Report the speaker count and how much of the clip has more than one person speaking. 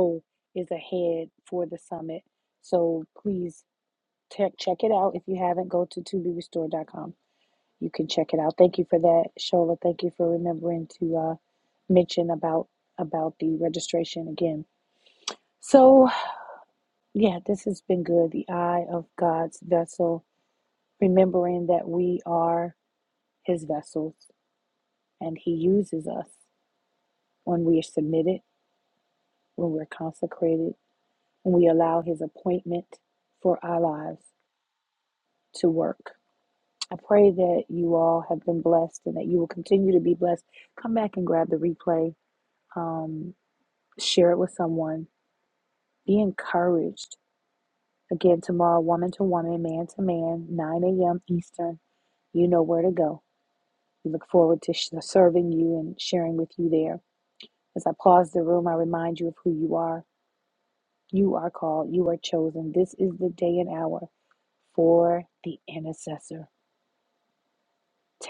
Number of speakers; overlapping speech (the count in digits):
1, no overlap